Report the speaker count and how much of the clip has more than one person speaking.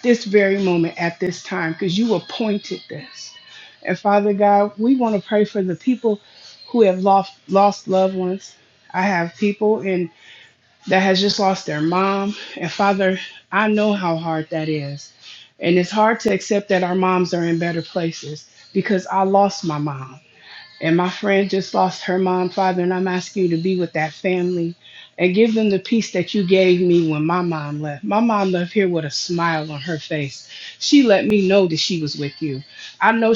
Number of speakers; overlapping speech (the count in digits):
1, no overlap